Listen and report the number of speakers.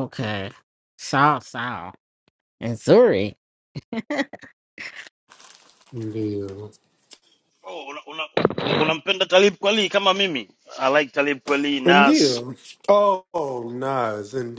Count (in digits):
3